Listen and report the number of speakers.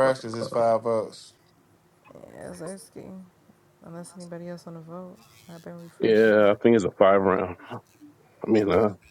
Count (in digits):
3